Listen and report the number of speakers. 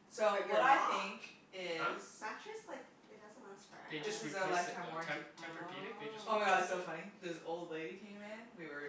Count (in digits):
3